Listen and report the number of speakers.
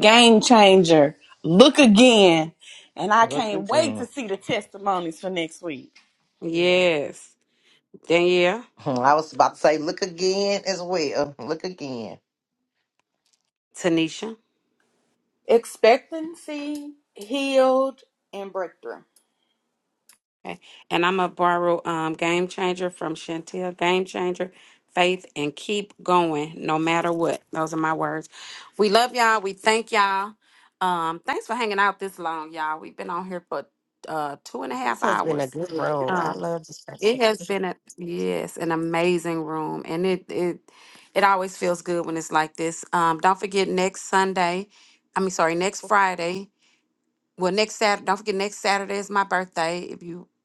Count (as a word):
five